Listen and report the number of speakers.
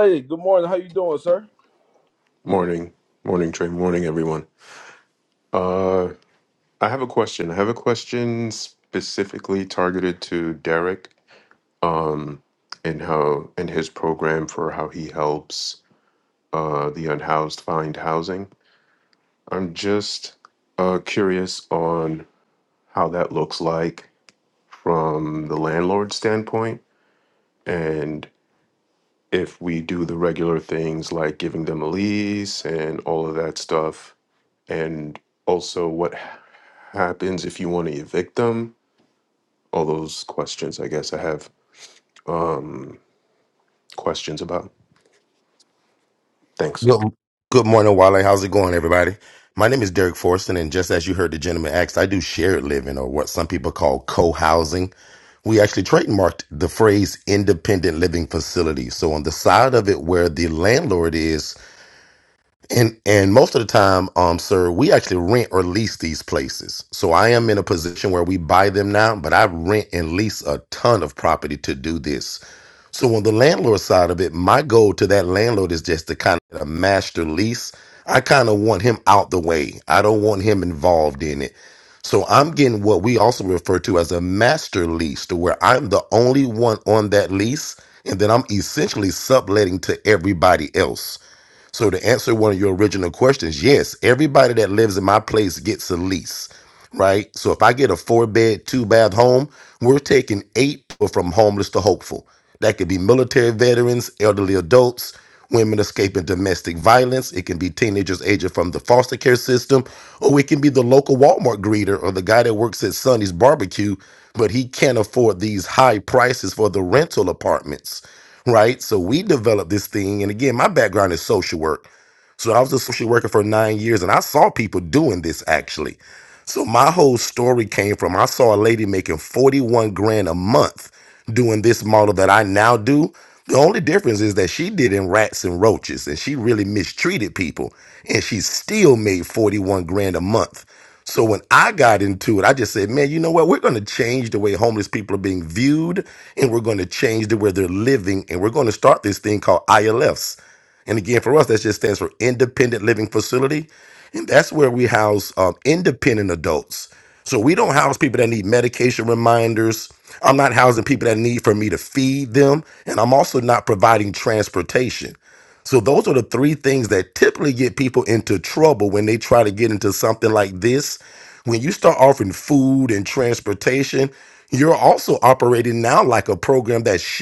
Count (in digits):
3